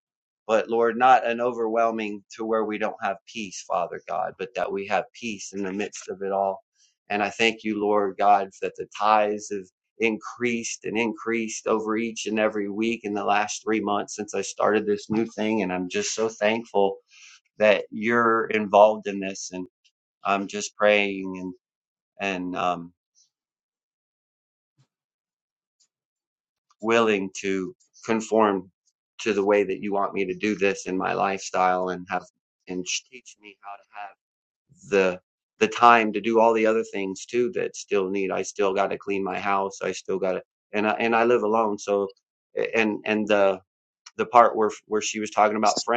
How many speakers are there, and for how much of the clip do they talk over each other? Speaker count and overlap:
one, no overlap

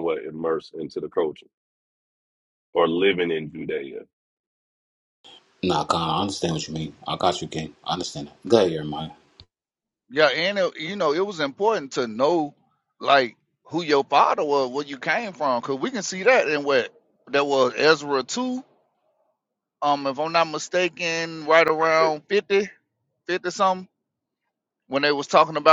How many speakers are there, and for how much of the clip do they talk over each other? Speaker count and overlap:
three, under 1%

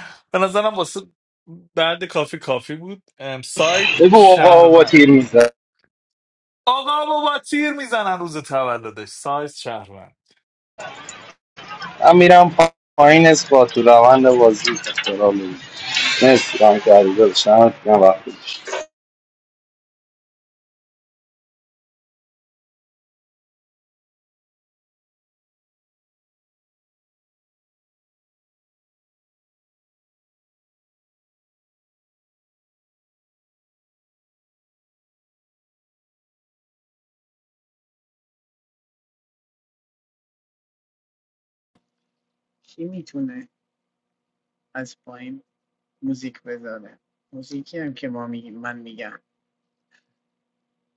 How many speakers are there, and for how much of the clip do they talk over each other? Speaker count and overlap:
three, about 2%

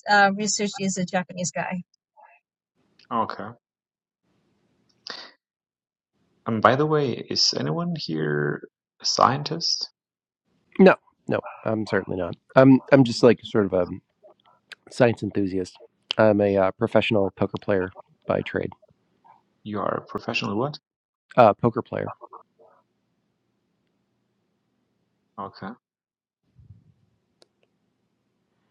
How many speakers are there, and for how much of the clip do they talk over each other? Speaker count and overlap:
three, no overlap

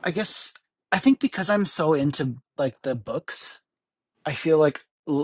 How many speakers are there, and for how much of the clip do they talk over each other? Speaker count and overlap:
one, no overlap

